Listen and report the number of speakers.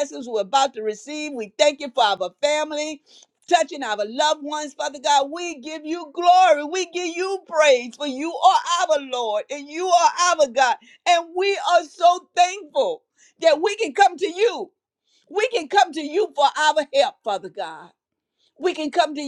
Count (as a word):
one